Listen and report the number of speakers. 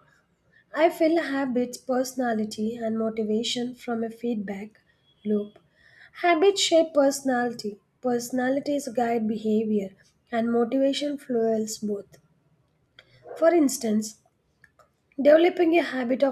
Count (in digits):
1